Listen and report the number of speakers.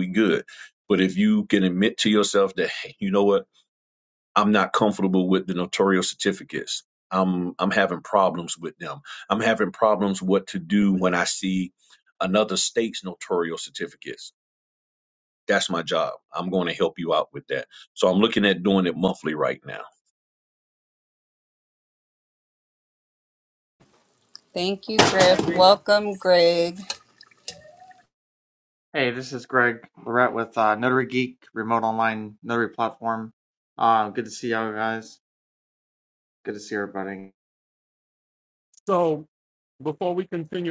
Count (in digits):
4